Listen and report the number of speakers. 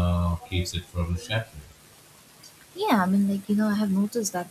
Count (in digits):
2